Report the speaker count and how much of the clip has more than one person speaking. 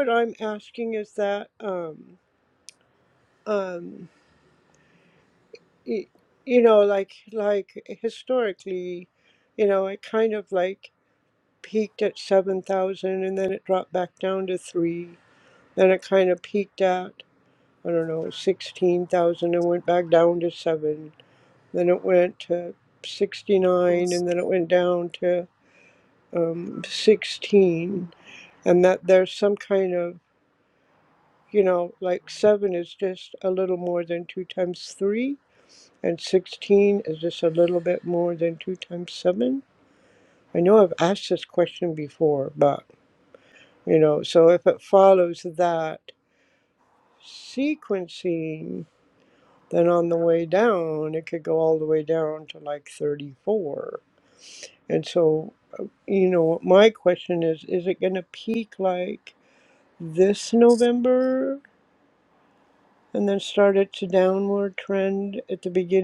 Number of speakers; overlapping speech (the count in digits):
1, no overlap